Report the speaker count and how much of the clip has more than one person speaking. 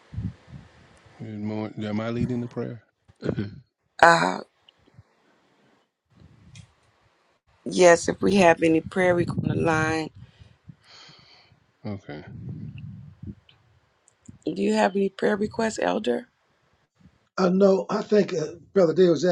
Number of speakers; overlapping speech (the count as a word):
three, no overlap